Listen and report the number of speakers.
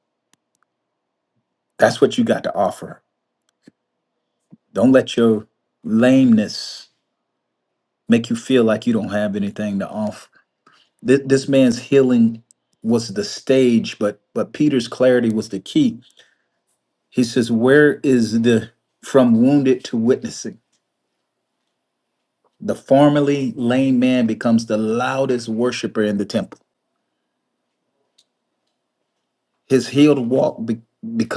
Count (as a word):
one